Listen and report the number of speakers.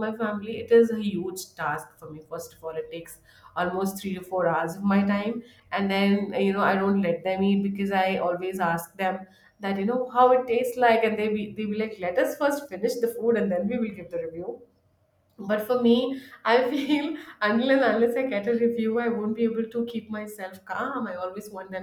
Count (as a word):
one